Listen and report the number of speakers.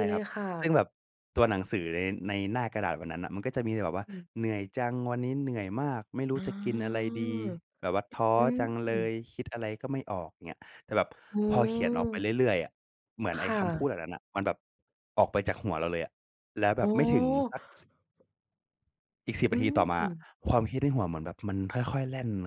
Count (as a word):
two